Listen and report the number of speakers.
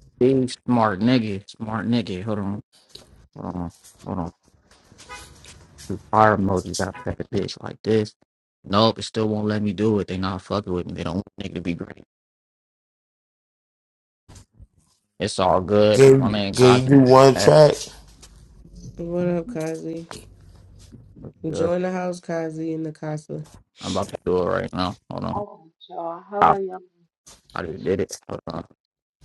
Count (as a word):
four